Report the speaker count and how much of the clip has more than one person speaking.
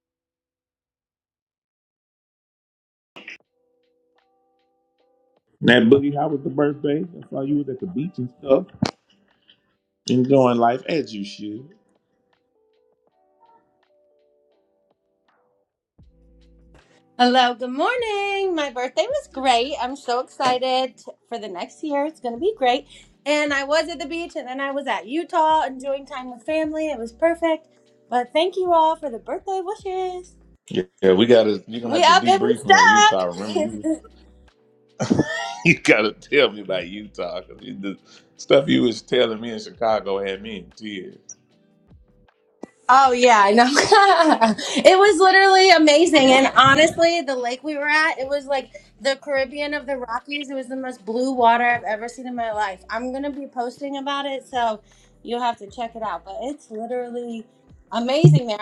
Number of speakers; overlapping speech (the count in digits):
2, about 3%